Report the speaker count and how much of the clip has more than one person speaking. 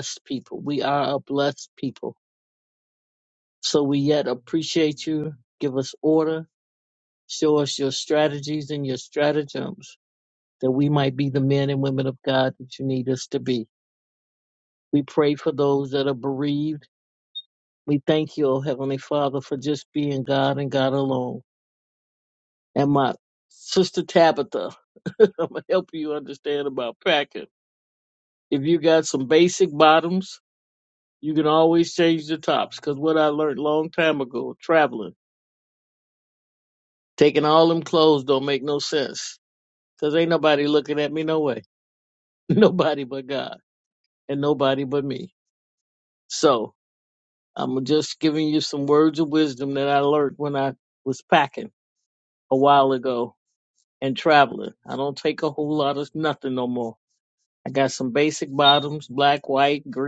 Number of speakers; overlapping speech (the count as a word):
one, no overlap